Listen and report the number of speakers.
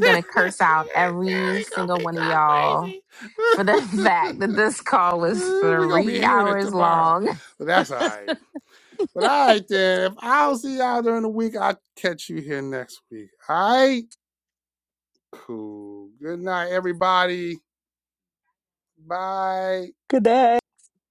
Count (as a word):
two